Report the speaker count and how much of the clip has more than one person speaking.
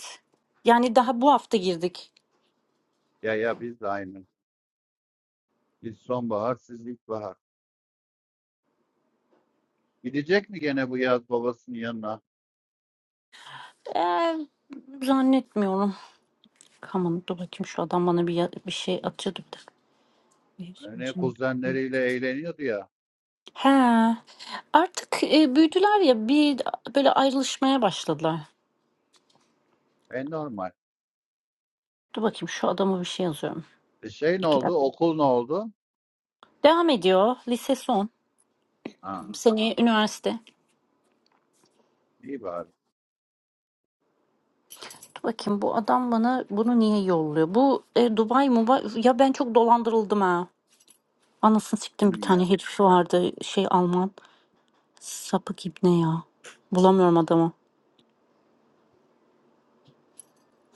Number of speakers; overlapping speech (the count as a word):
two, about 2%